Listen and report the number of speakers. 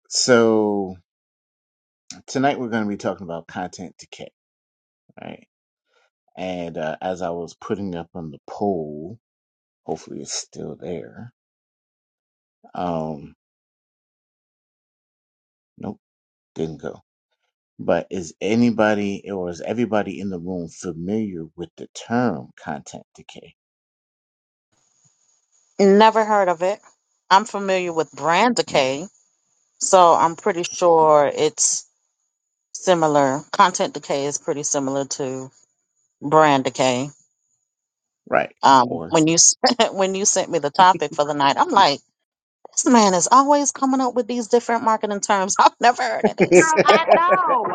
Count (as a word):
three